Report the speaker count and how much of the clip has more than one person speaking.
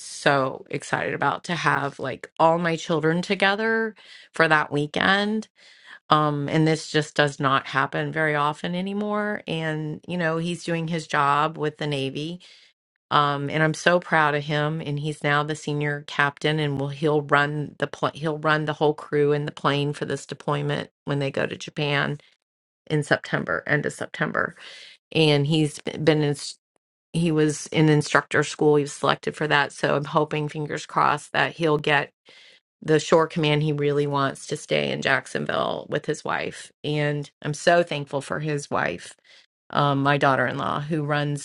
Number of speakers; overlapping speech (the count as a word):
one, no overlap